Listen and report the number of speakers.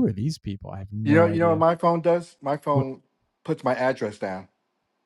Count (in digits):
2